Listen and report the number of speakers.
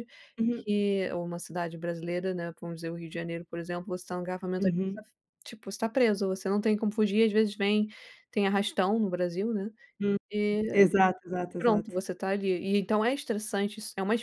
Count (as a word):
two